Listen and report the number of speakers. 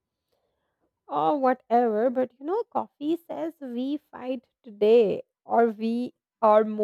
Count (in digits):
1